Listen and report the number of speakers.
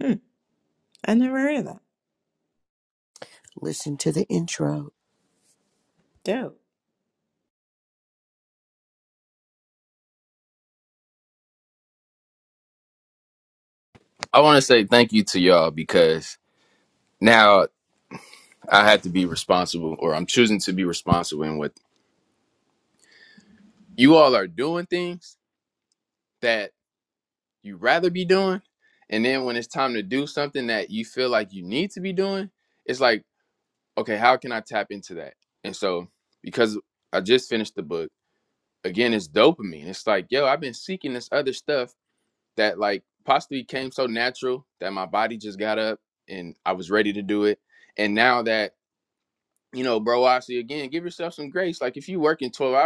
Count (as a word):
three